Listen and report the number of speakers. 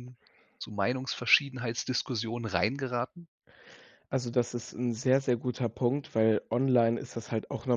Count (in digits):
2